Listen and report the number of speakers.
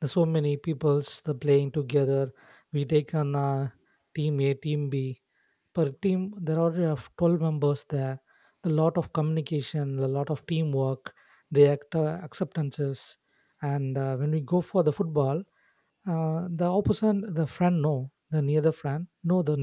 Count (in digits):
1